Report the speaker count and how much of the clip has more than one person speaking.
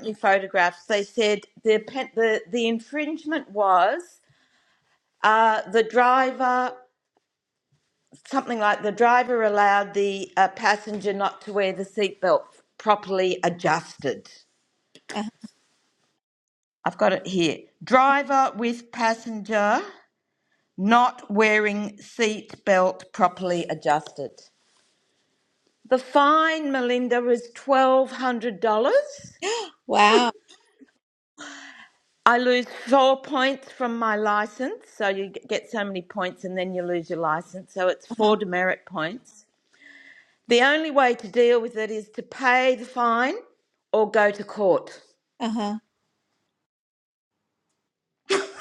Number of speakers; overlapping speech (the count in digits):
2, about 1%